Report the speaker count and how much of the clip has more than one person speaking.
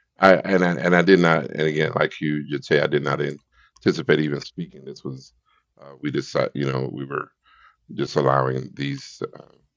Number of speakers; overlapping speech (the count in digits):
1, no overlap